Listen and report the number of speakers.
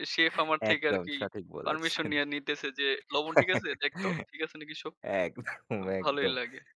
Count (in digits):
2